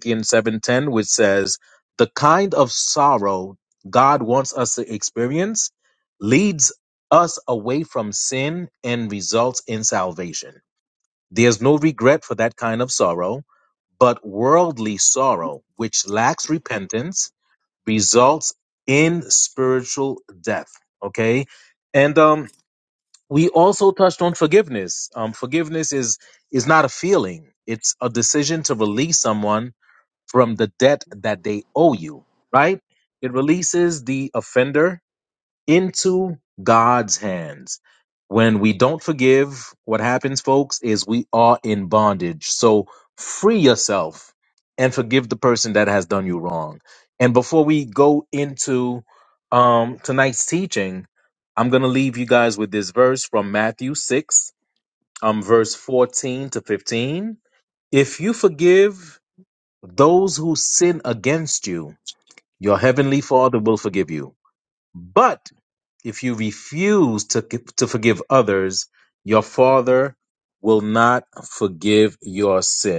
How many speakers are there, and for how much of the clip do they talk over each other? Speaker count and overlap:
one, no overlap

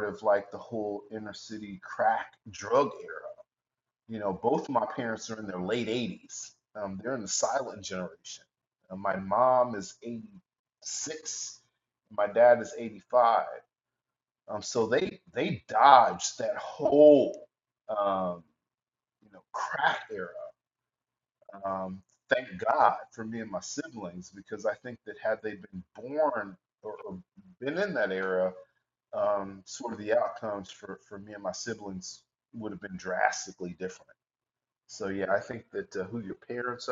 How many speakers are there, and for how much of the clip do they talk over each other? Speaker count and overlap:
one, no overlap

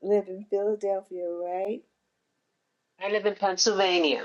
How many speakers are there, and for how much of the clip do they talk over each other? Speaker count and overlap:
two, no overlap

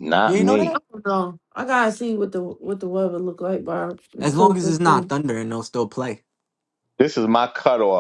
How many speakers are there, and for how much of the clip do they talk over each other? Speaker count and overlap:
three, about 15%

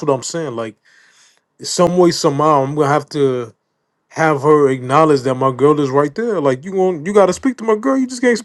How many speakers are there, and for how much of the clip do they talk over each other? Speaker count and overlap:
one, no overlap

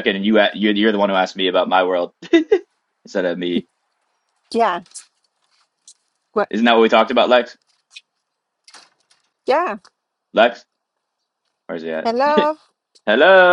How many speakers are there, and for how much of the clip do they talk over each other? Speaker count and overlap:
two, no overlap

